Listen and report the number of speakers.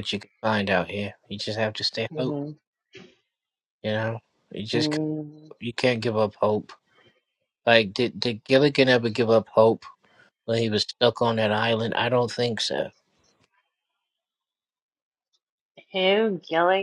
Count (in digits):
2